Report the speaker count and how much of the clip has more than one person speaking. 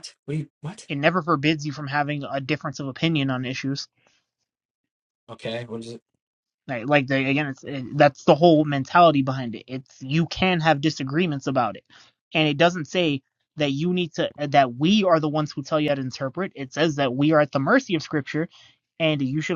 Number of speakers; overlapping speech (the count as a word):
two, no overlap